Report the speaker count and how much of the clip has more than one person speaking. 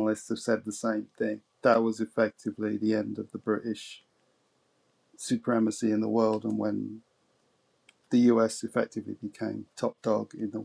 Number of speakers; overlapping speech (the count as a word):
one, no overlap